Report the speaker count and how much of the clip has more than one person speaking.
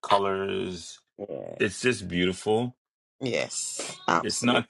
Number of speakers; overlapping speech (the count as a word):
two, about 8%